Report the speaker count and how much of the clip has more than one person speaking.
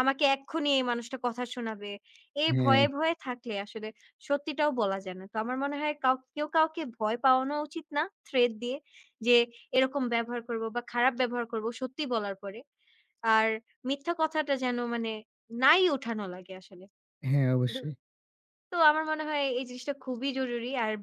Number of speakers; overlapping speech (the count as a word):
two, about 3%